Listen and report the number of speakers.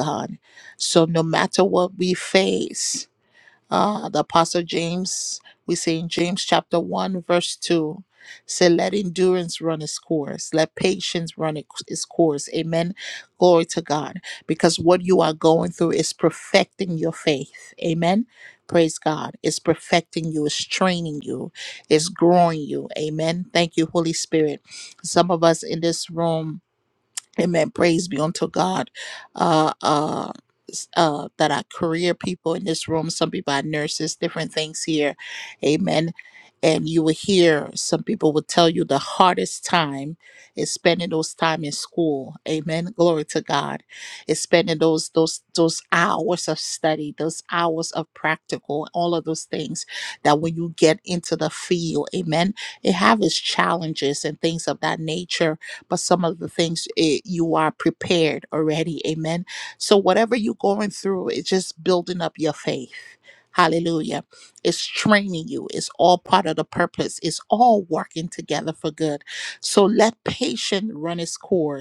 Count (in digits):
1